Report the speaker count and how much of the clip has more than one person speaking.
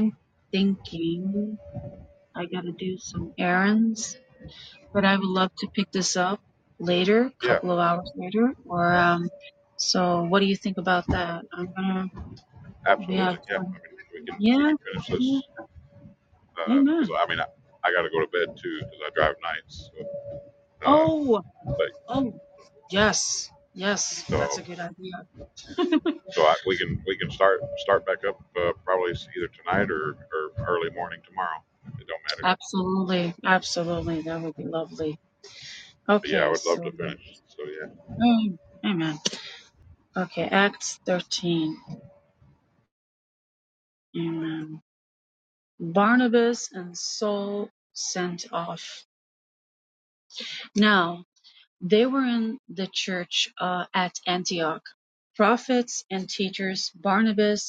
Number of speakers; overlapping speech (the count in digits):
2, about 5%